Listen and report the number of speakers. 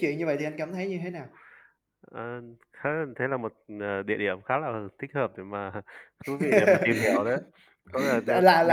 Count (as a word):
two